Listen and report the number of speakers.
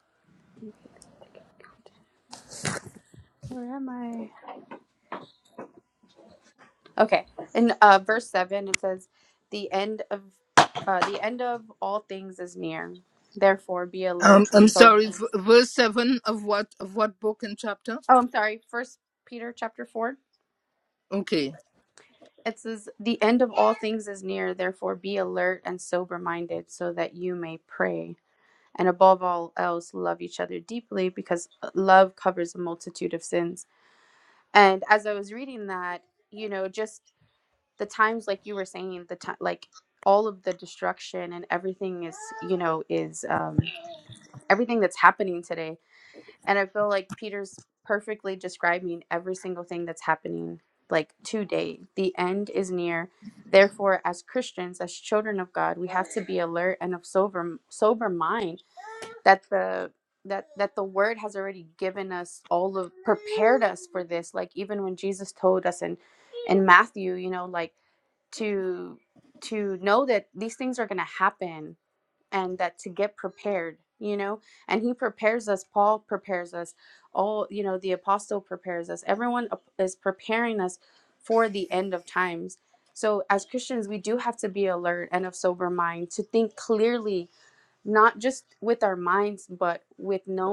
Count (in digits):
2